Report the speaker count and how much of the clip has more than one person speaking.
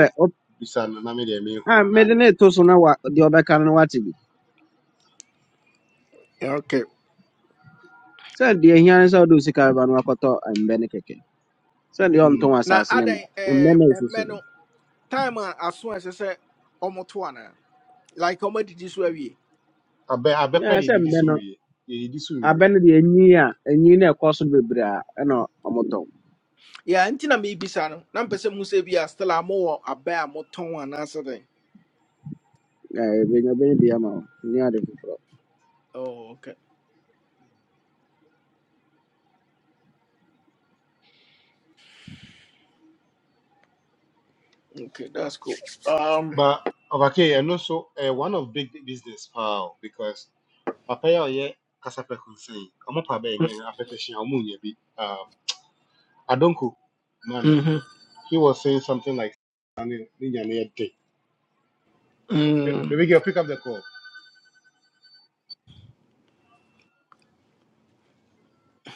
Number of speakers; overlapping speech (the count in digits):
3, about 6%